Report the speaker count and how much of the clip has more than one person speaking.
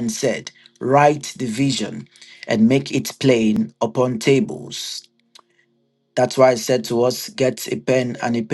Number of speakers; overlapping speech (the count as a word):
one, no overlap